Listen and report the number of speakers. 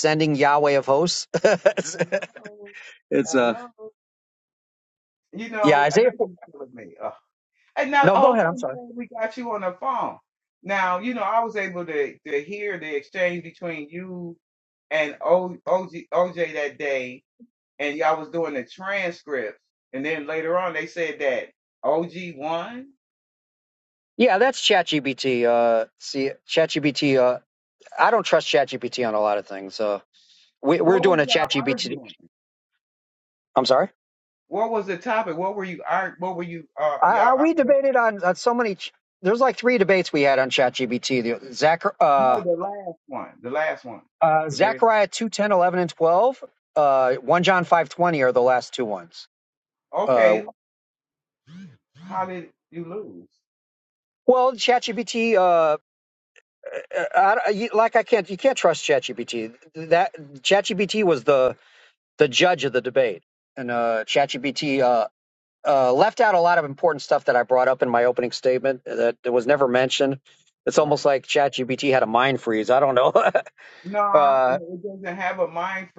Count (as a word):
two